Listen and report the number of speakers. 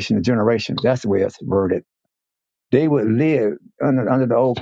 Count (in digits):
1